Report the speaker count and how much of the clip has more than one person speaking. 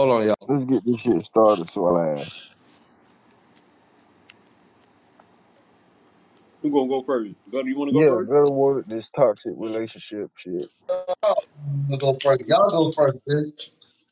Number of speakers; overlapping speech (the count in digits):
3, about 3%